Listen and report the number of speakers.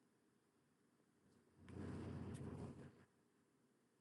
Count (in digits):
0